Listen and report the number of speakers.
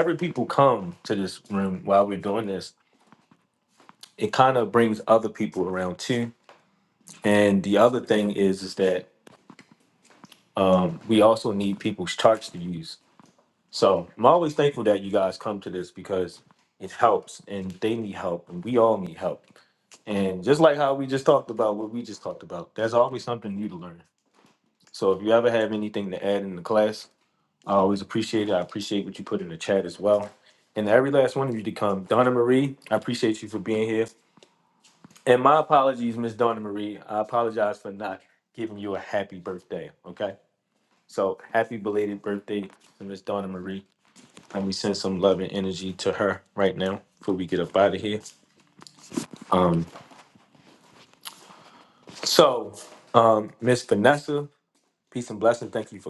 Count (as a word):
one